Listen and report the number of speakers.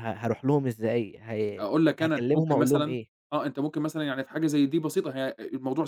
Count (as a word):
two